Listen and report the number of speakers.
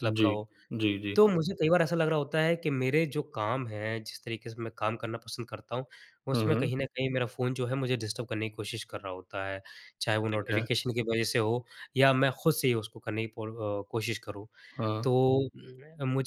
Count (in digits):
2